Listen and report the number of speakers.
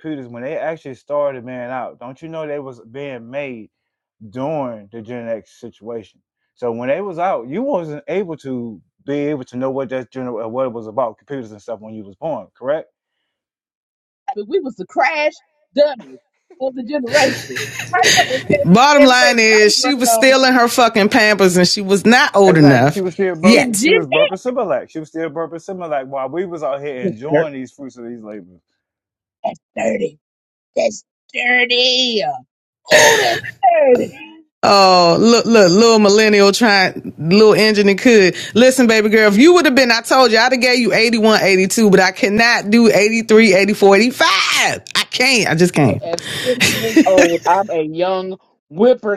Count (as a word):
three